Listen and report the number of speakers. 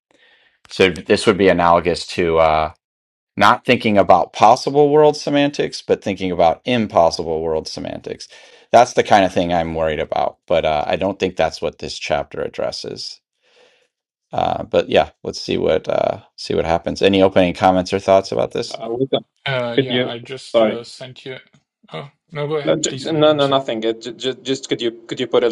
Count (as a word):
three